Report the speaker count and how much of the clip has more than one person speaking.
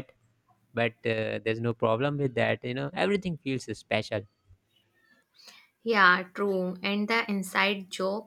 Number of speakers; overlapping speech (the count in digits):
2, no overlap